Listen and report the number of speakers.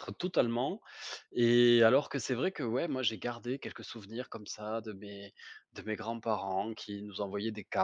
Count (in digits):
1